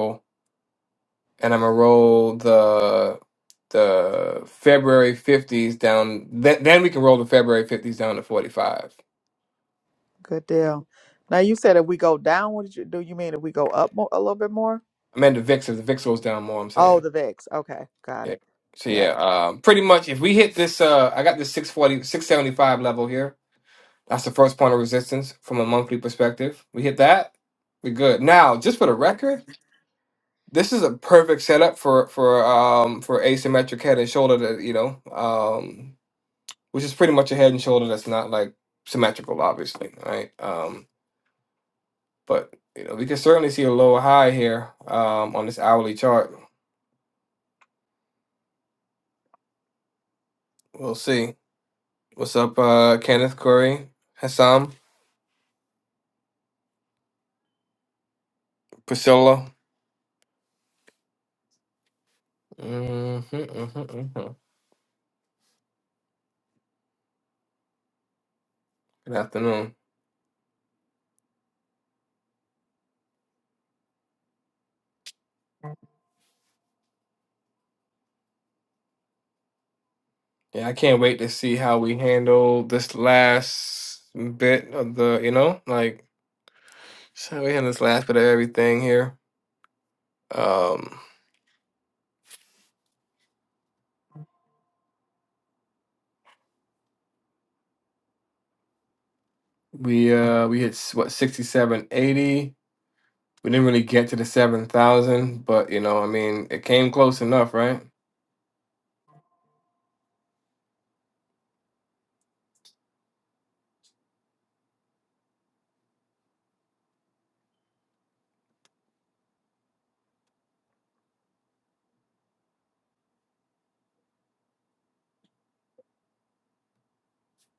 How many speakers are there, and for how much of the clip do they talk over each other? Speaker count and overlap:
two, under 1%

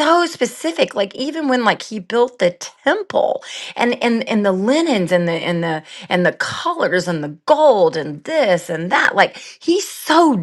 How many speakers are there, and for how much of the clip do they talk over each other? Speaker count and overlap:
one, no overlap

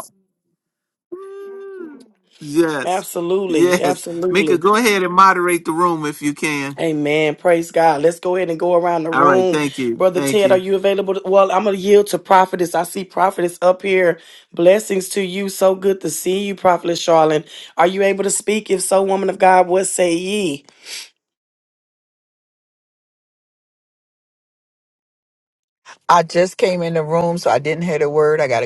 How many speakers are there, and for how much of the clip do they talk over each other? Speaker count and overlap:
three, about 7%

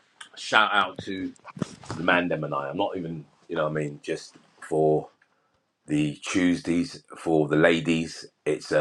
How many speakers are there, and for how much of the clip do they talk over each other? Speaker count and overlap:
one, no overlap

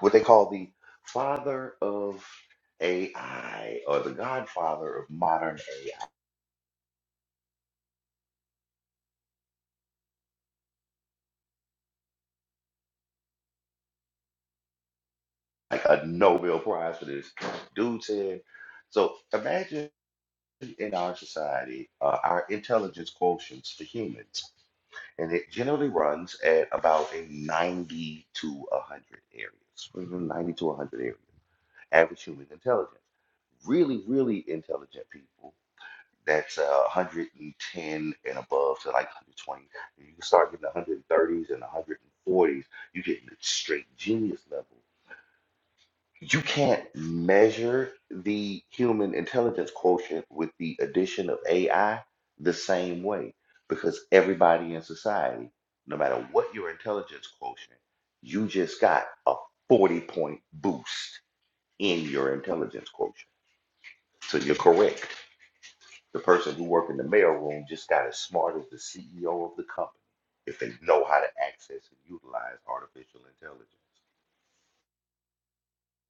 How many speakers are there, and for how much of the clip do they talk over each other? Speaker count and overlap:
one, no overlap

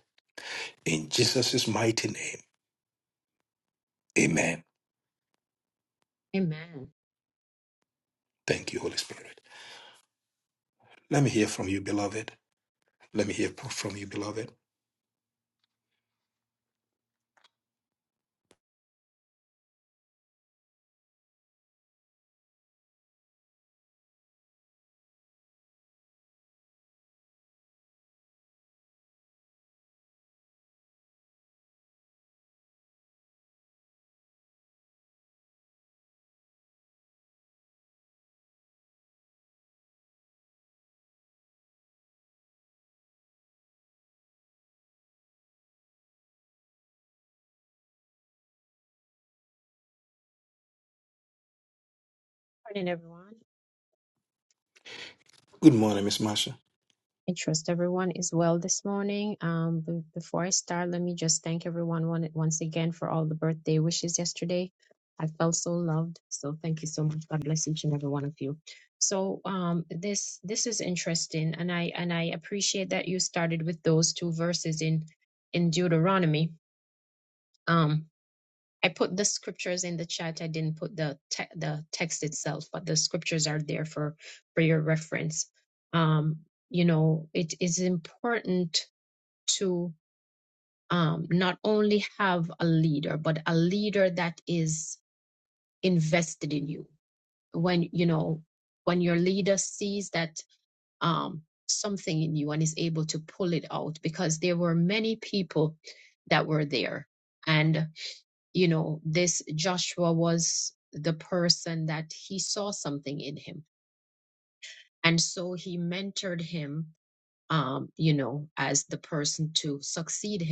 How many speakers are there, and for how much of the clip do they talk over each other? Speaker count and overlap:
two, no overlap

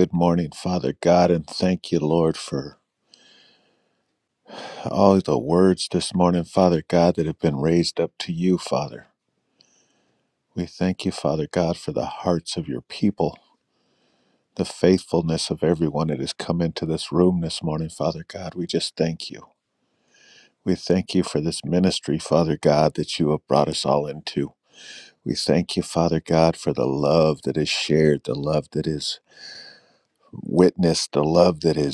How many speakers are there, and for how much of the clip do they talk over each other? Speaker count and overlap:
one, no overlap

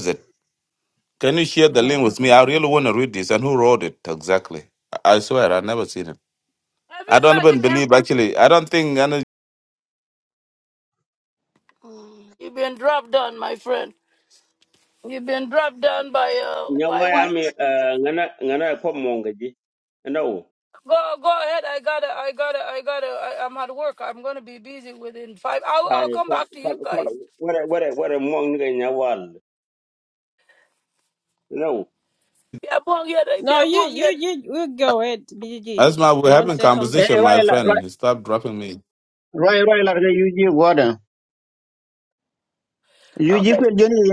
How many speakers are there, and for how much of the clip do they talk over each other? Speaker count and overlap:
five, about 11%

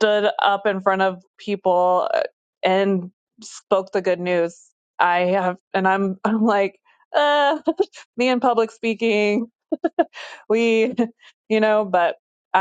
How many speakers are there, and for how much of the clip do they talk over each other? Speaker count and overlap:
one, no overlap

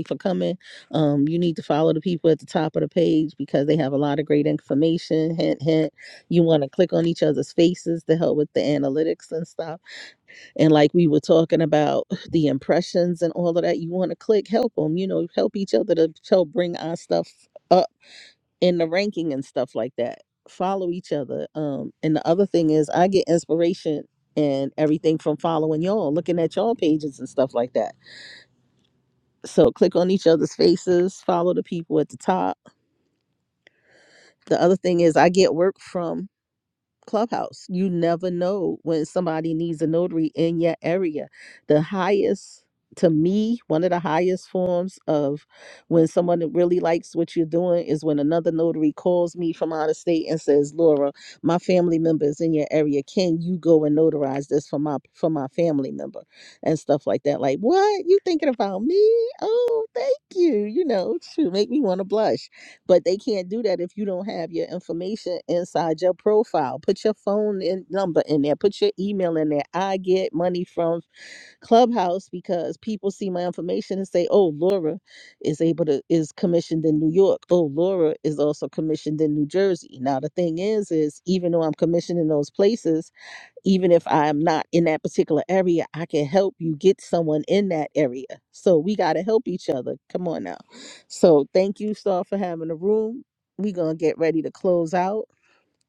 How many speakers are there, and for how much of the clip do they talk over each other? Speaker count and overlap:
one, no overlap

